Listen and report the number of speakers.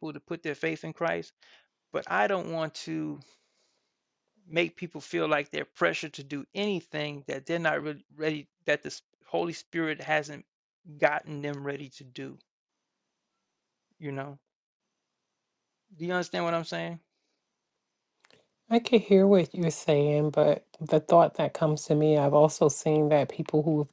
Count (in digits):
2